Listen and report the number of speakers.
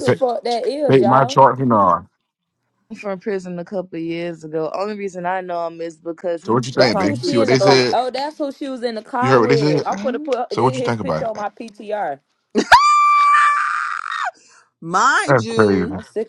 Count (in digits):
4